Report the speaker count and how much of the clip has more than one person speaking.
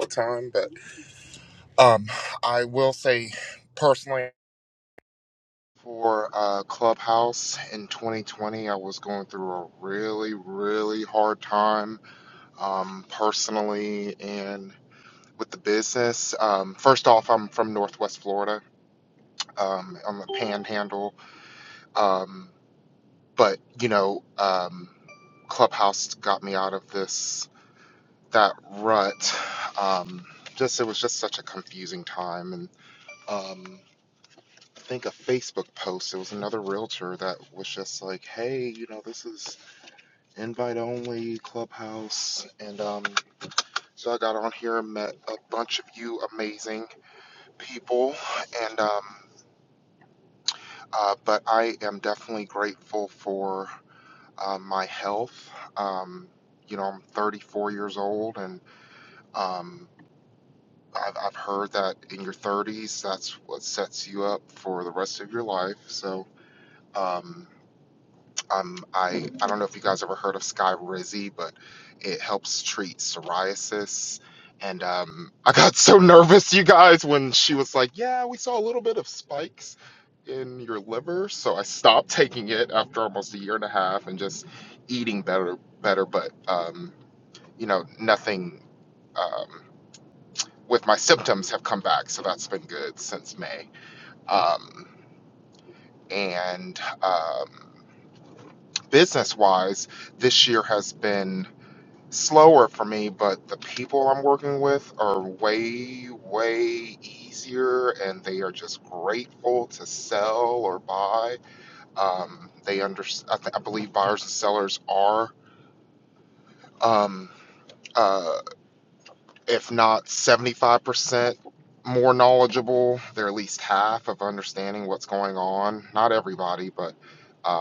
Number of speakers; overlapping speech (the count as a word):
one, no overlap